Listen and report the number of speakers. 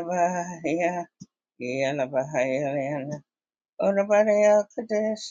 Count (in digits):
1